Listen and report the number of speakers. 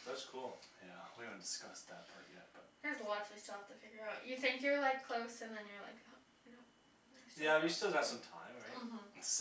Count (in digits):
3